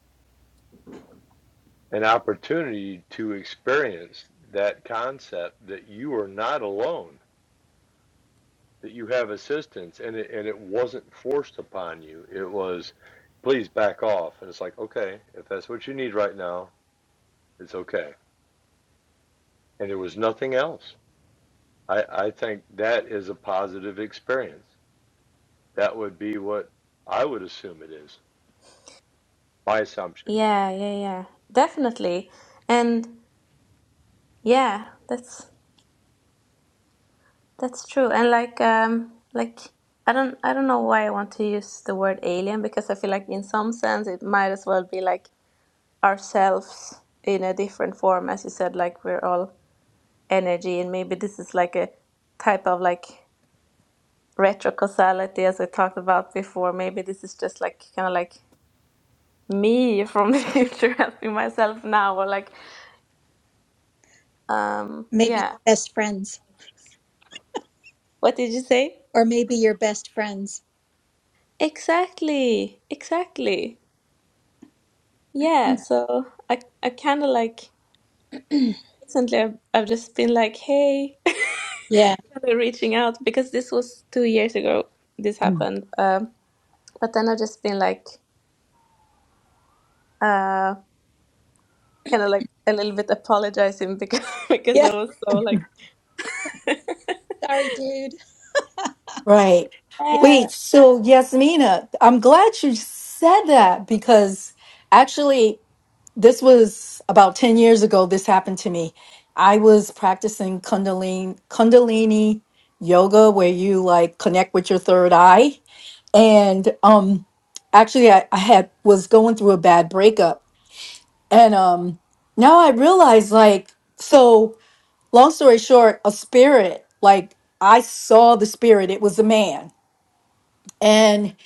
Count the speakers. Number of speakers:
4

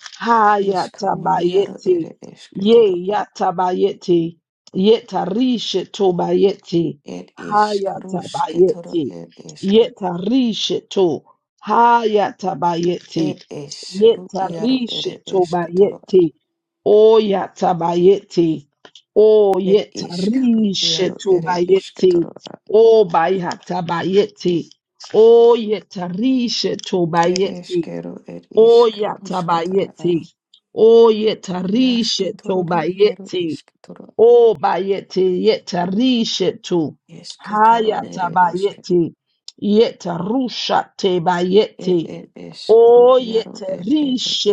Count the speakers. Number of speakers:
2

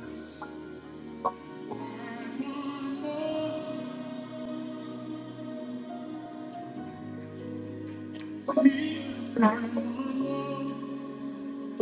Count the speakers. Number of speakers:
0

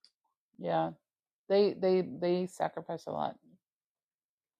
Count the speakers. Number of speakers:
1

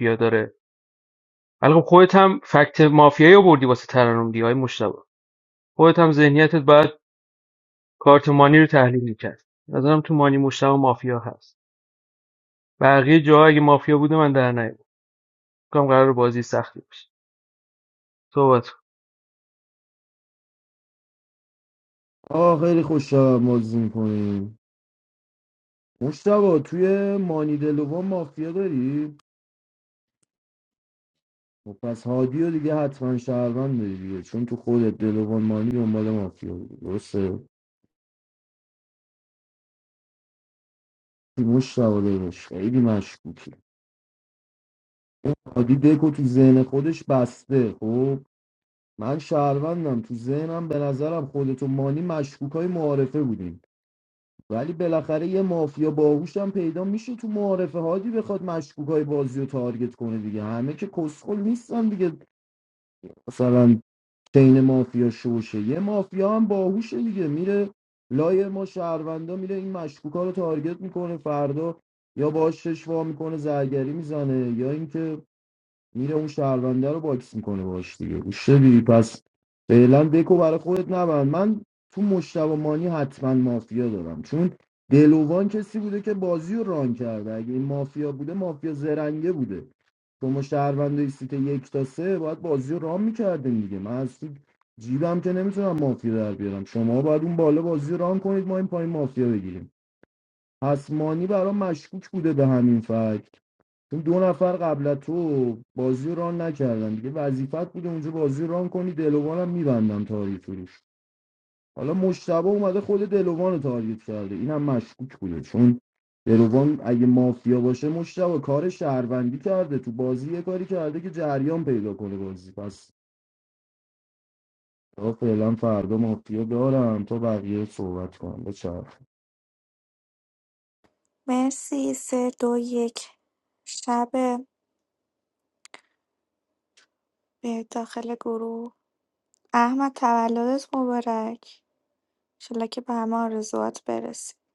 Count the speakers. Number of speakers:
3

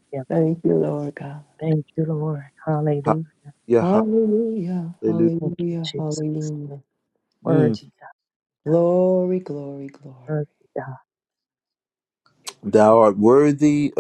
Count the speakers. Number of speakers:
3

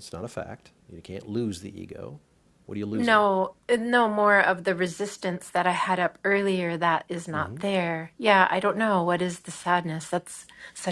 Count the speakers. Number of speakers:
2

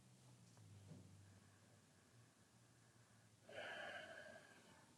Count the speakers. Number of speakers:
0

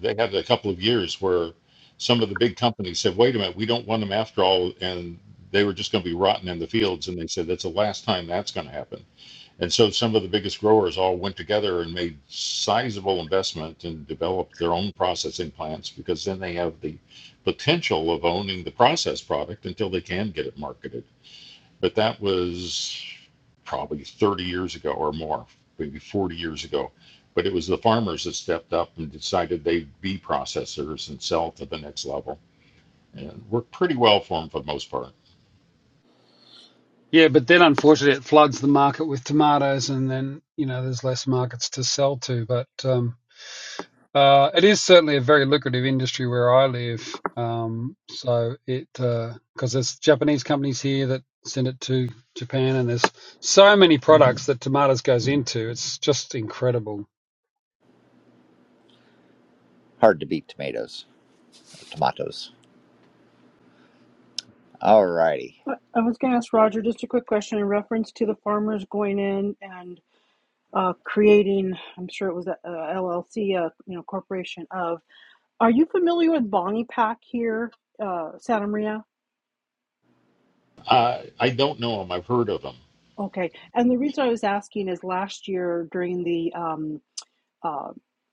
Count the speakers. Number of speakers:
4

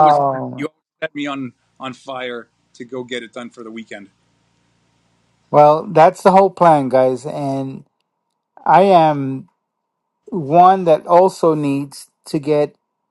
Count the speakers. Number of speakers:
2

